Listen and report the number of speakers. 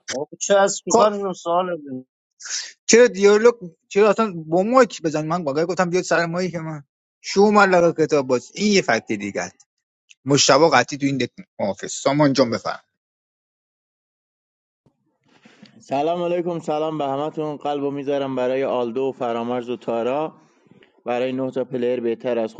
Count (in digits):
3